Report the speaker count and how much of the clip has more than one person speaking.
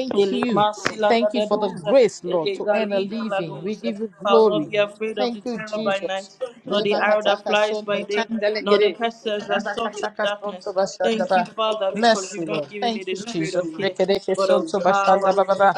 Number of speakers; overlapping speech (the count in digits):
2, about 69%